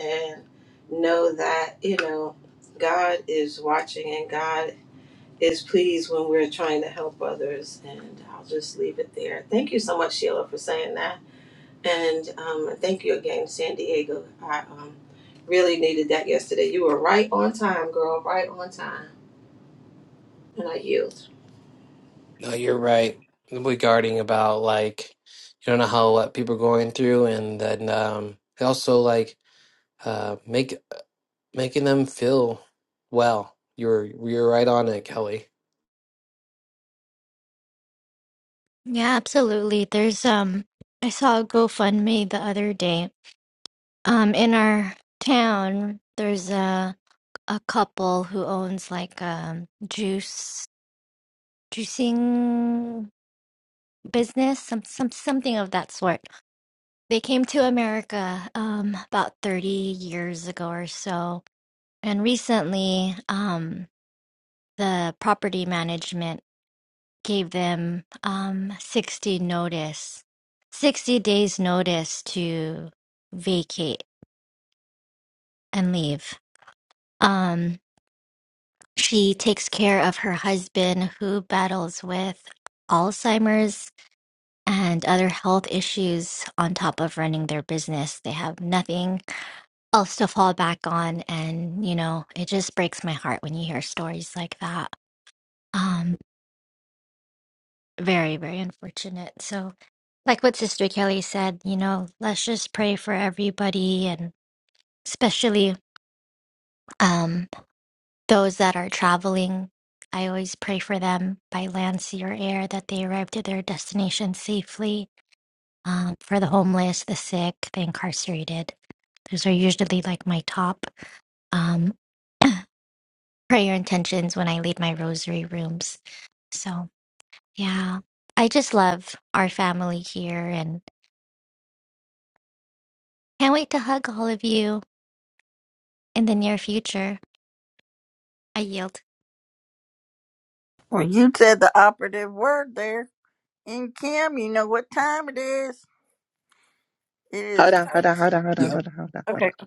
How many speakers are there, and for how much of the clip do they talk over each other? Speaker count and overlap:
five, under 1%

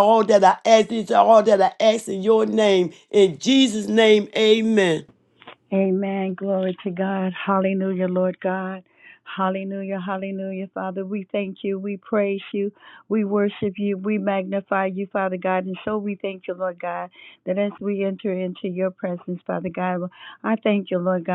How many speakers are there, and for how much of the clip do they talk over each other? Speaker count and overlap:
two, no overlap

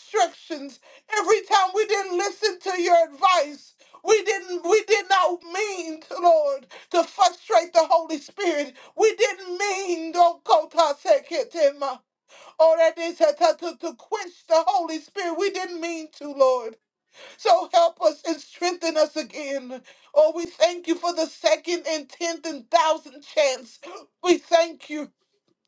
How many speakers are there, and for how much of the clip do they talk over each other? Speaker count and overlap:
one, no overlap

